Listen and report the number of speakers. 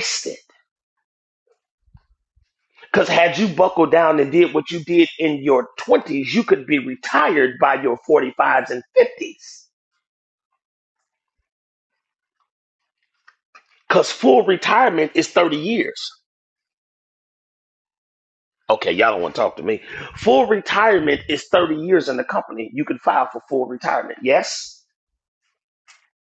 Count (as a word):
one